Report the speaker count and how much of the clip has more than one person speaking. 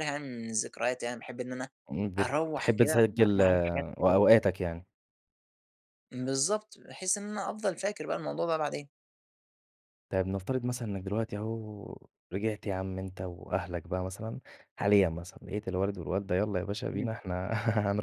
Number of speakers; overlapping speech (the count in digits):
2, about 7%